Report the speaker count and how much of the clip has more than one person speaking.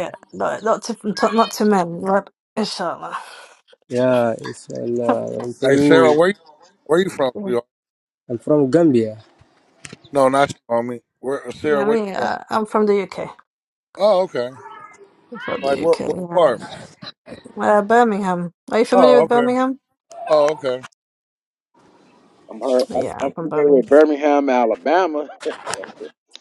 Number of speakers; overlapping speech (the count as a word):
four, about 12%